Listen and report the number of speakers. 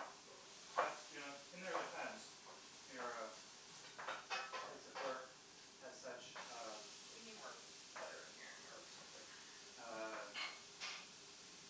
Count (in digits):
2